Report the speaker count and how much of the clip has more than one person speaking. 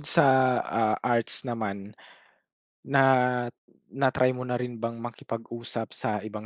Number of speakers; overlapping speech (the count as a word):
one, no overlap